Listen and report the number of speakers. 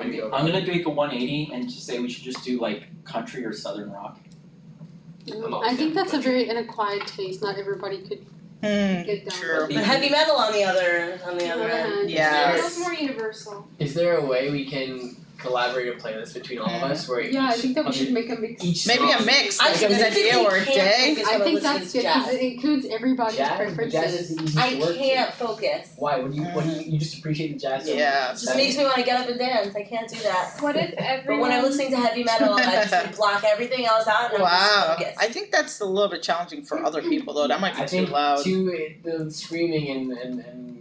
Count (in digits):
6